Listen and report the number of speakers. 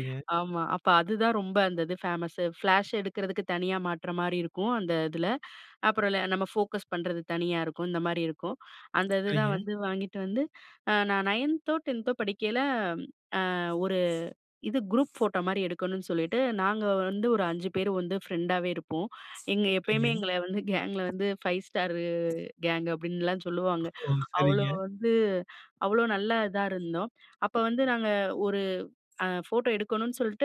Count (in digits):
2